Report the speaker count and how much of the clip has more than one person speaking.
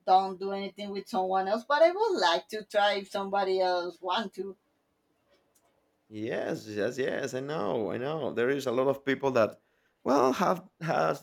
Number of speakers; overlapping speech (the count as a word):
two, no overlap